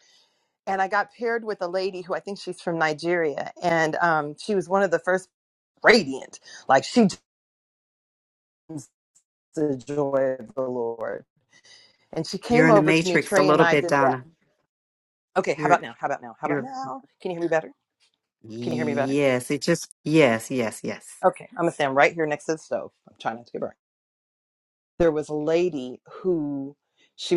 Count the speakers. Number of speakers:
2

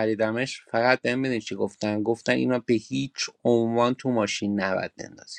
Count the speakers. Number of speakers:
1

